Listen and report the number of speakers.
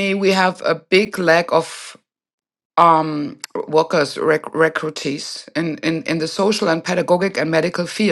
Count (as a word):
one